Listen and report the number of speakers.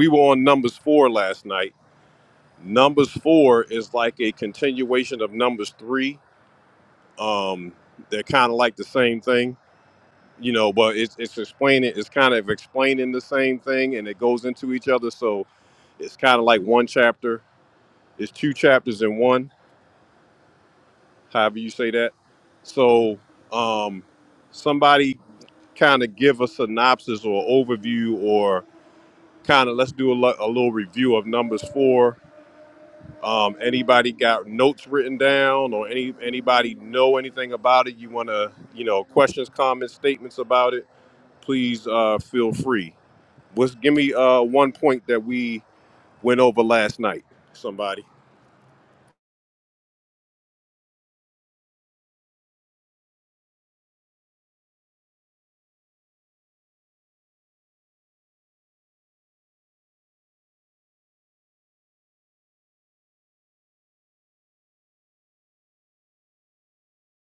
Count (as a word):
one